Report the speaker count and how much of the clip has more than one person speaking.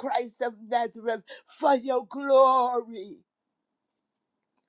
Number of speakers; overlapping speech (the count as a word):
one, no overlap